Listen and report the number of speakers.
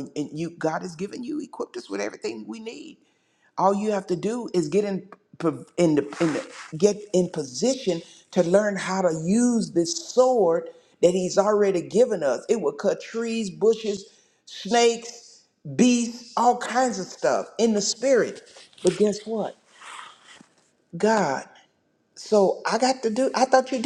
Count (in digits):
1